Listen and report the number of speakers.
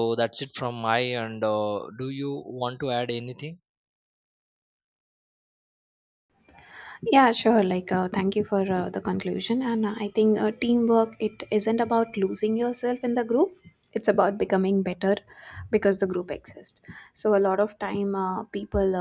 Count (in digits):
2